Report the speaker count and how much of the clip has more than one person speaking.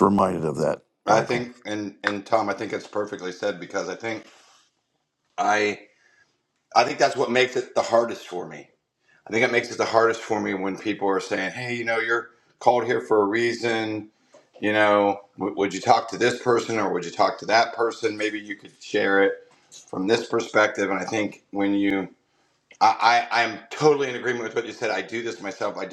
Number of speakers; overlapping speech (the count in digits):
2, about 1%